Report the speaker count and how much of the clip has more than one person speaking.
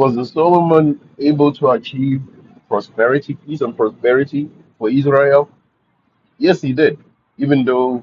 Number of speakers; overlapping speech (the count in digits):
1, no overlap